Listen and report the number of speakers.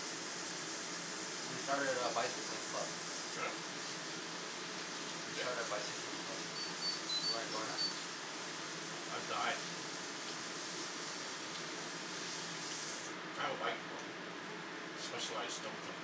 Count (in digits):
2